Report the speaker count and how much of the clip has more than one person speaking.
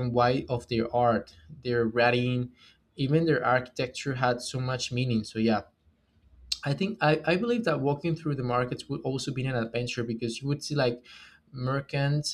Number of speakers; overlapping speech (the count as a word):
one, no overlap